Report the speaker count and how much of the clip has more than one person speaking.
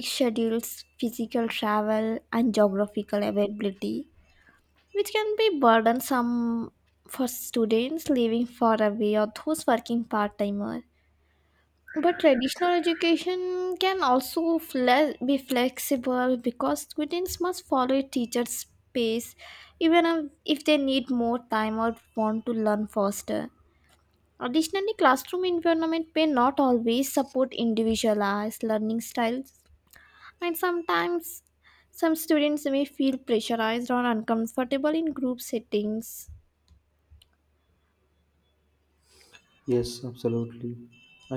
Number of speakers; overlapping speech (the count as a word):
two, no overlap